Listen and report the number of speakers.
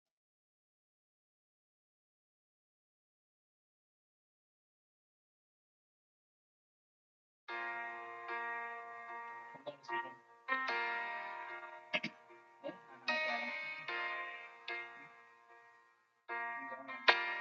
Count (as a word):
zero